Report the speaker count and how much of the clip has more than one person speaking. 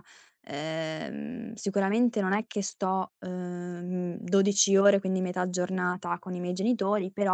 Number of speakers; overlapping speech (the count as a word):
one, no overlap